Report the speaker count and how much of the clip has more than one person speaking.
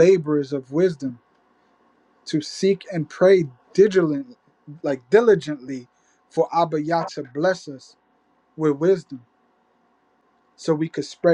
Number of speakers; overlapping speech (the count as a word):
one, no overlap